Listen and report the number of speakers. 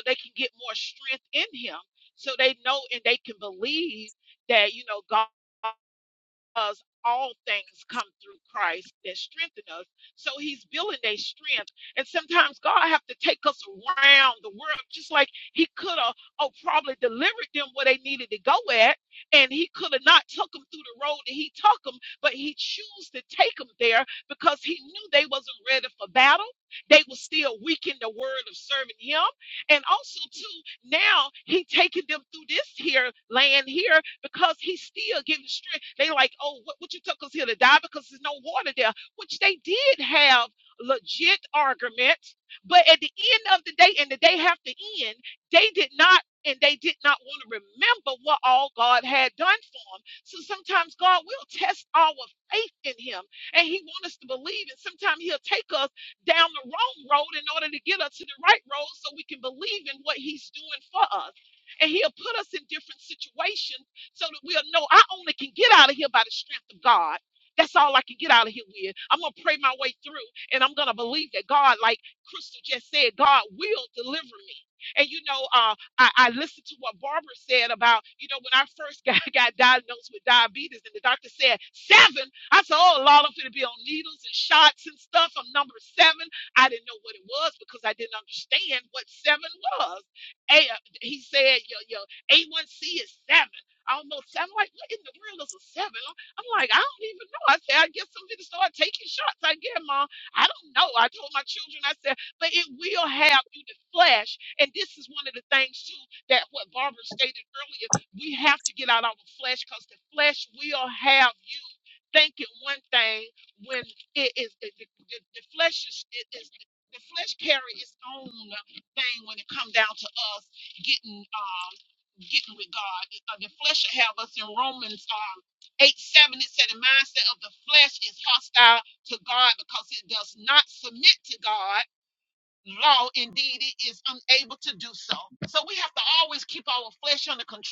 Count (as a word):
one